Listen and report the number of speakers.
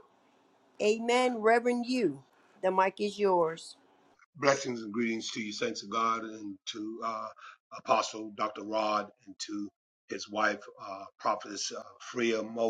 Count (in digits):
2